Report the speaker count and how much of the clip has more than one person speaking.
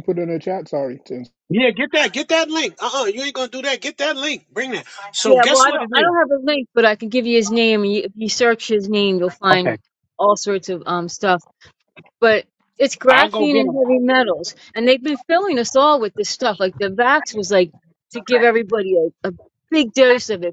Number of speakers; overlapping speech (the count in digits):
3, about 9%